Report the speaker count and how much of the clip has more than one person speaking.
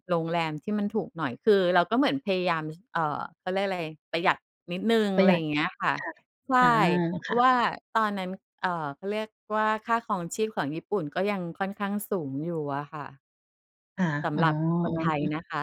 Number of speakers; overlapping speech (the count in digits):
2, about 4%